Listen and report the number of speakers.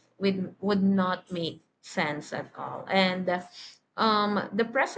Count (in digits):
1